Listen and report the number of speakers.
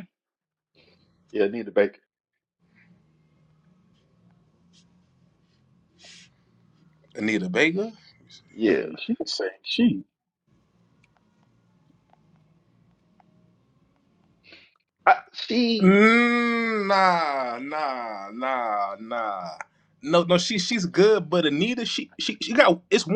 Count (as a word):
three